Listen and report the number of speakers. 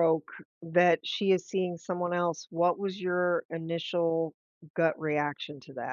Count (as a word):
one